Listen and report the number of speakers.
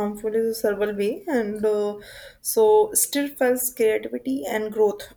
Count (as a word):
one